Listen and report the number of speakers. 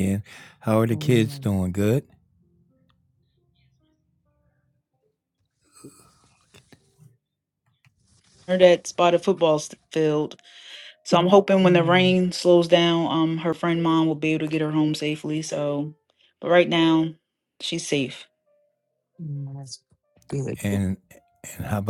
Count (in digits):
3